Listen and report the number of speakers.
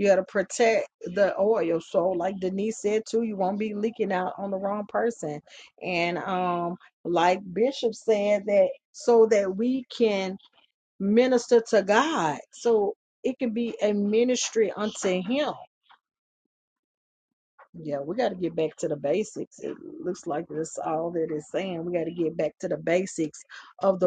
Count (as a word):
one